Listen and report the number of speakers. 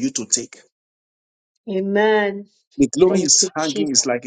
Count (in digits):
2